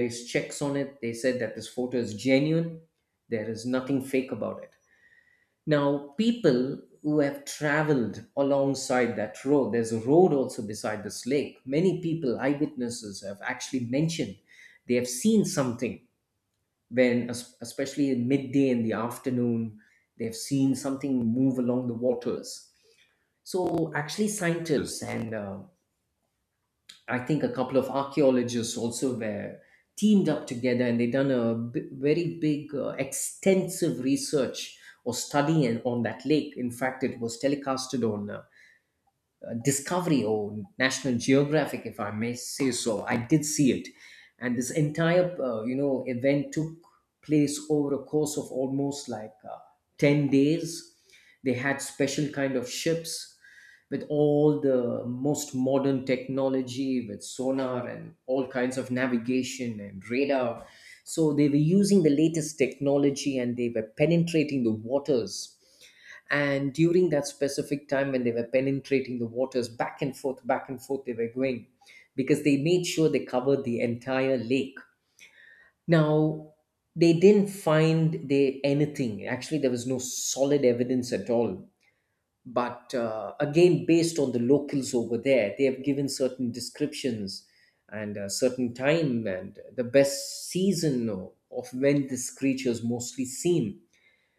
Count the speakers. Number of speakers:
1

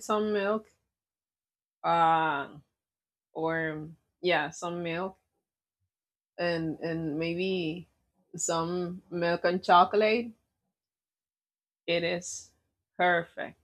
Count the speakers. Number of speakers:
1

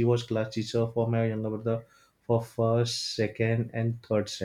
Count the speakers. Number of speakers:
1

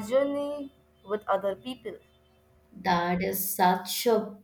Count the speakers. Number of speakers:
2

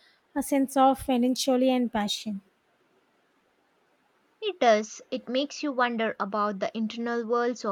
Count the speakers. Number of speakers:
2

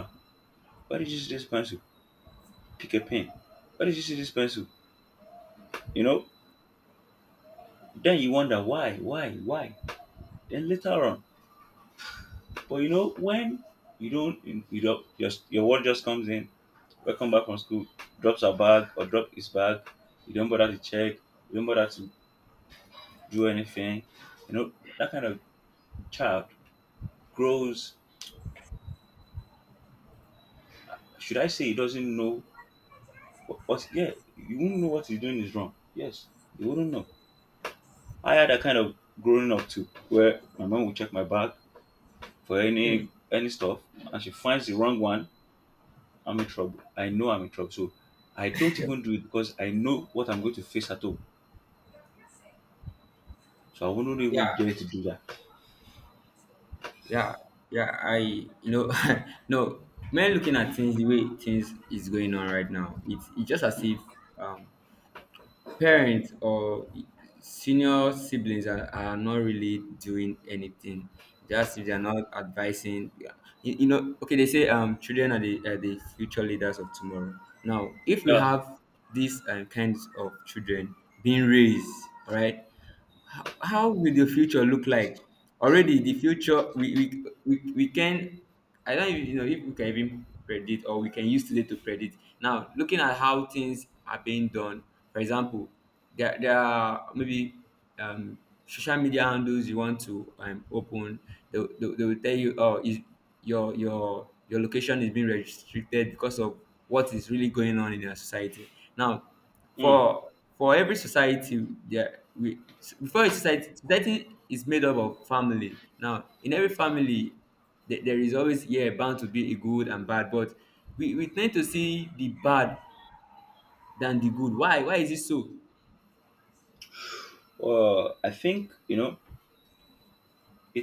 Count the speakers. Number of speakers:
2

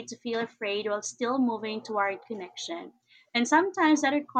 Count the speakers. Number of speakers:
1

